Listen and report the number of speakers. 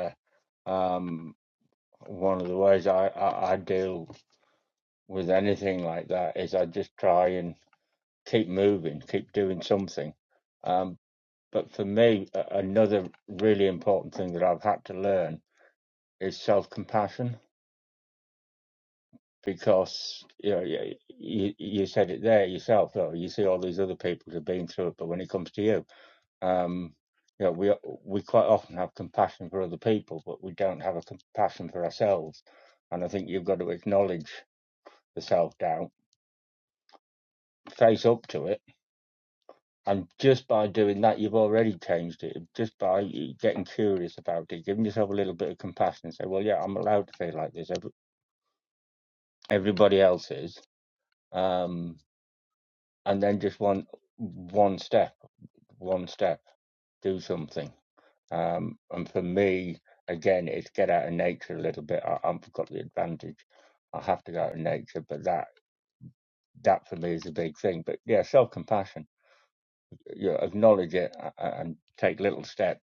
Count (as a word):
one